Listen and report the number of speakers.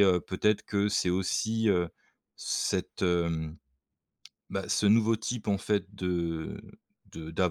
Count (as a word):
one